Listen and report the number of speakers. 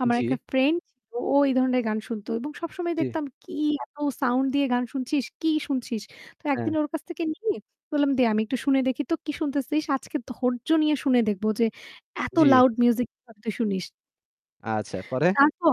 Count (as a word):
two